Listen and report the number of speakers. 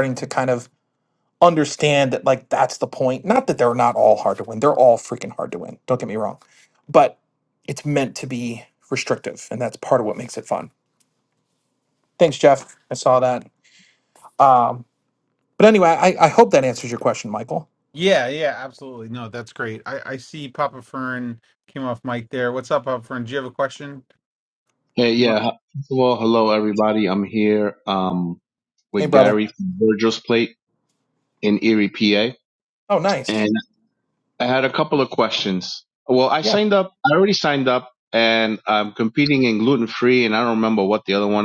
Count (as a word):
three